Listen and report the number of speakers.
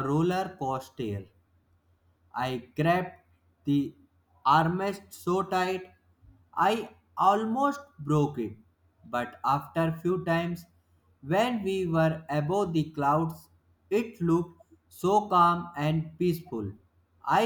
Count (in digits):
1